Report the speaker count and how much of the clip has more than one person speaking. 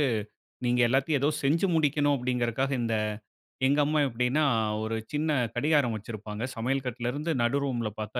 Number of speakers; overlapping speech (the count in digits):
1, no overlap